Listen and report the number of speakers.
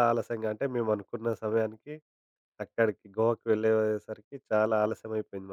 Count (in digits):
1